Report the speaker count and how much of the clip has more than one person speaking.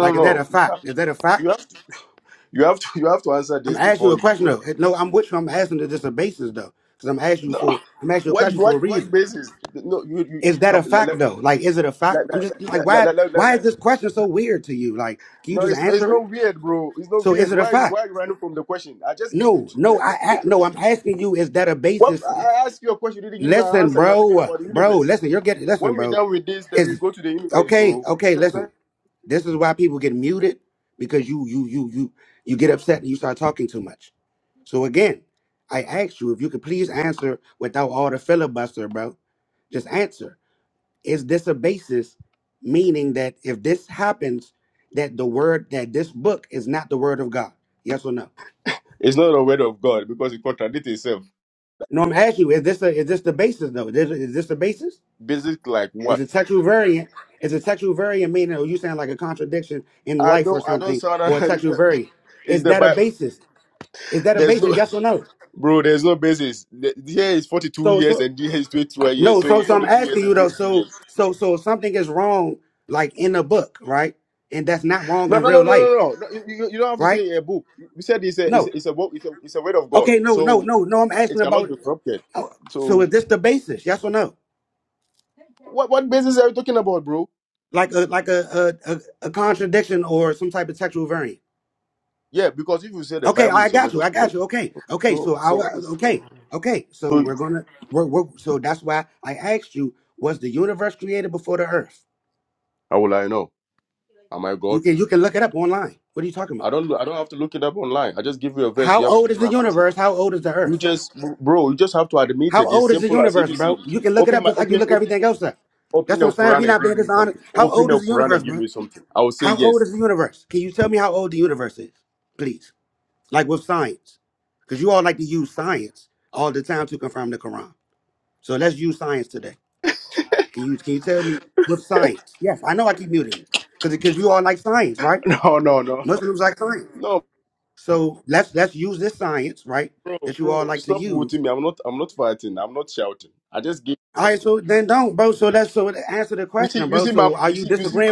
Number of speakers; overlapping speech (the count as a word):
two, about 20%